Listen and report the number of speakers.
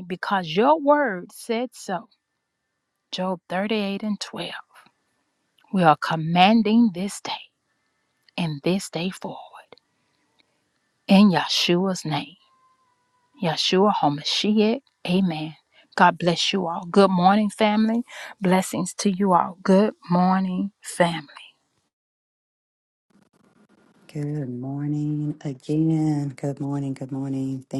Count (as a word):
two